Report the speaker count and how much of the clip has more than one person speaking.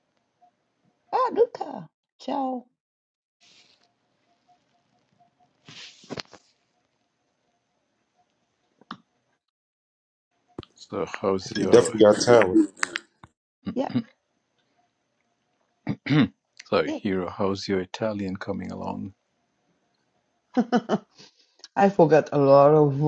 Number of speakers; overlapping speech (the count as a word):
three, about 3%